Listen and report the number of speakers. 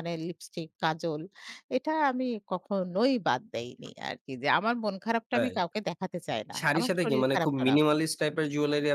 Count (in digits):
2